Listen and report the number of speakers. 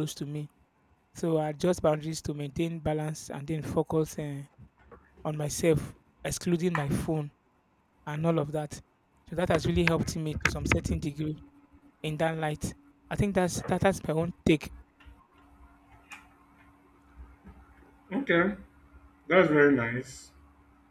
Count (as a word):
two